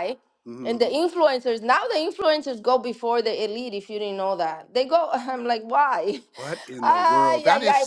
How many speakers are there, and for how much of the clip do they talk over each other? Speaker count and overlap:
two, about 16%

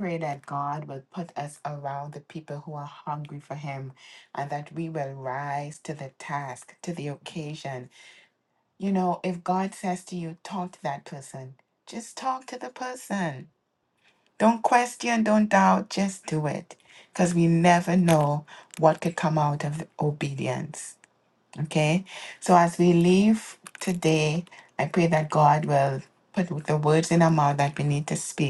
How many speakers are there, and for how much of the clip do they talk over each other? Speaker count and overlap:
one, no overlap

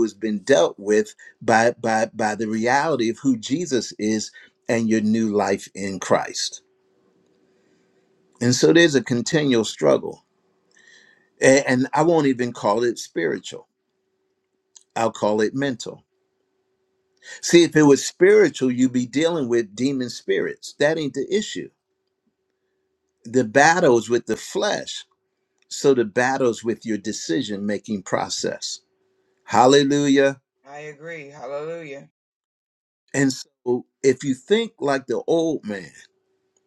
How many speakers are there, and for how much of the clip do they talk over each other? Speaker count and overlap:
two, no overlap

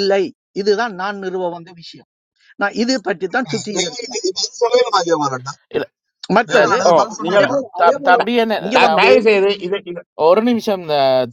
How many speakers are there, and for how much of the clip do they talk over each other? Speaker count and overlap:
four, about 22%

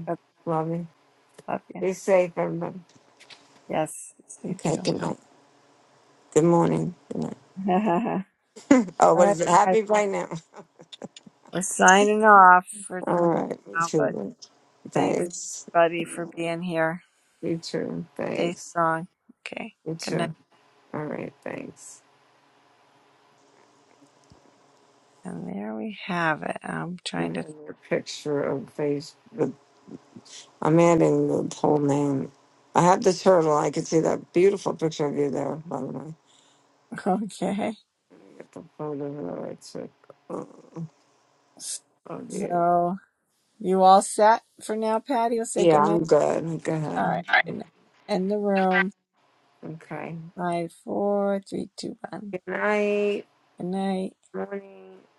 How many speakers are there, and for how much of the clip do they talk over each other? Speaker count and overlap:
two, about 6%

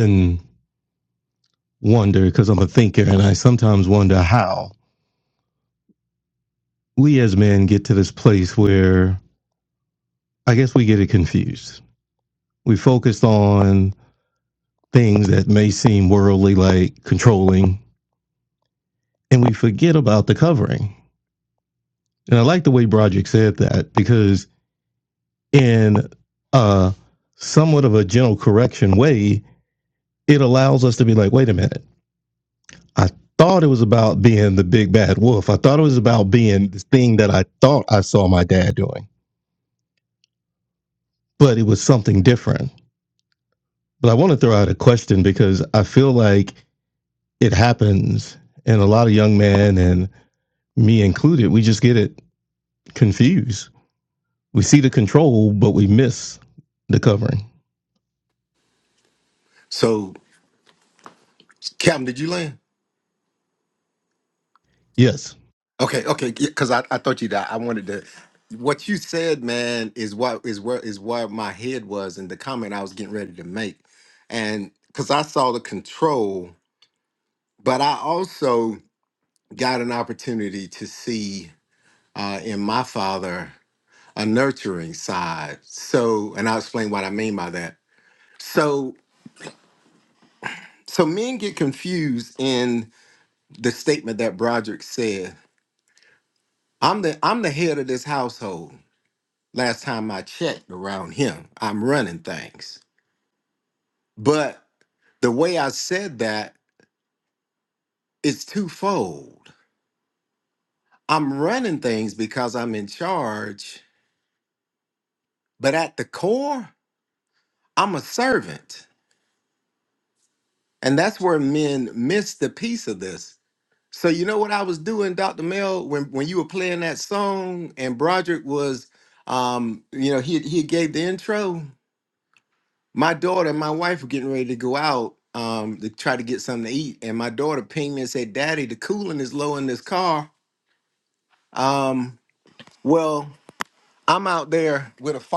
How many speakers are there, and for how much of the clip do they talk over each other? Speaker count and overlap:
two, no overlap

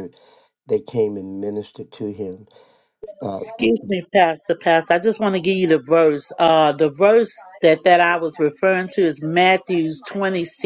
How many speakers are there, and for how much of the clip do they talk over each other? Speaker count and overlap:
two, about 2%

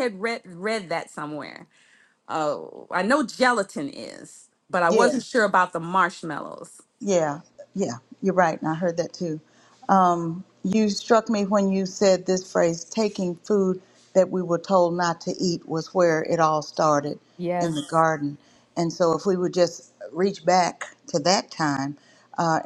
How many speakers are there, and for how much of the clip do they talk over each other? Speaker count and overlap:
two, about 2%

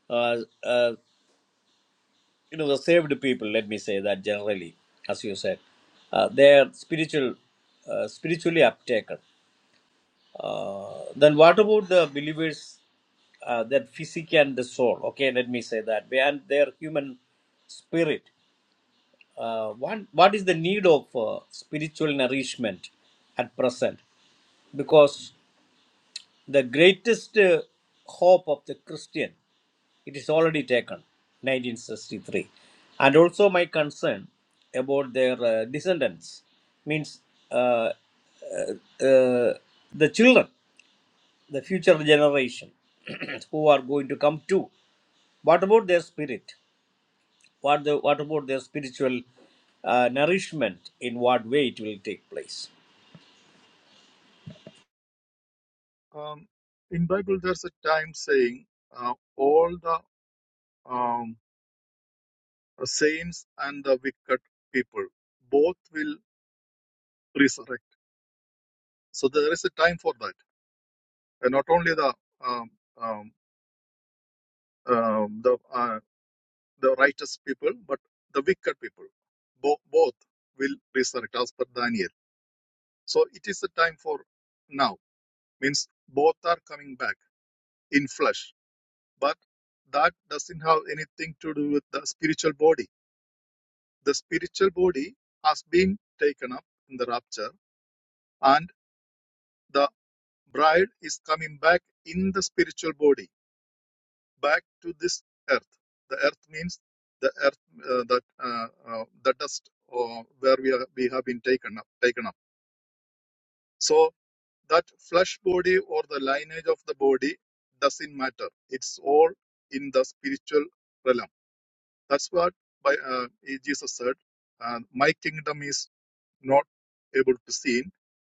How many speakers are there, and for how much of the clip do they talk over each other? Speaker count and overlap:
two, no overlap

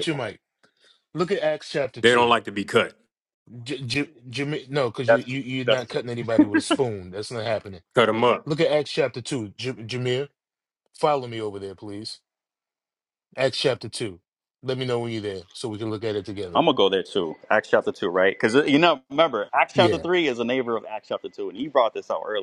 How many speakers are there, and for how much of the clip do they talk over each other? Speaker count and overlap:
three, about 7%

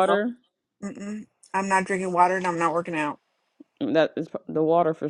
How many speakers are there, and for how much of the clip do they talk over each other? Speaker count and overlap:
two, about 4%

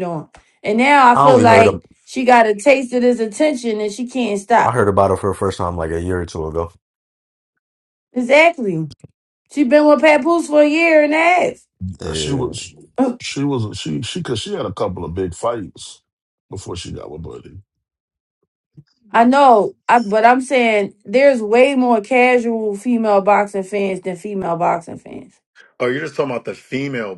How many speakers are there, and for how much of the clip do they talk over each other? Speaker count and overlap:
four, about 5%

